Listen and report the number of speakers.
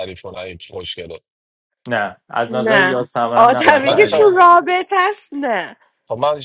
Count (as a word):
three